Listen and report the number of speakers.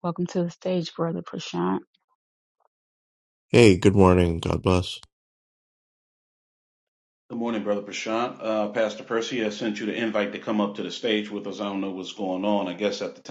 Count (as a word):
three